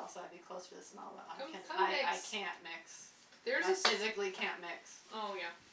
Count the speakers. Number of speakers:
two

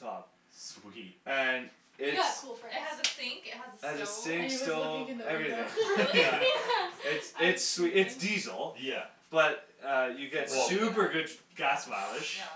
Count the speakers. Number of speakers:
four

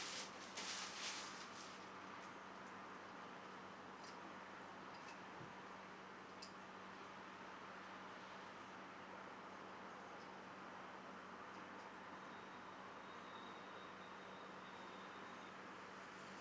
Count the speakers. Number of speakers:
zero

